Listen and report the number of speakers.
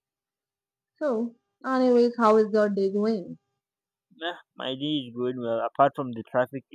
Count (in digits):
2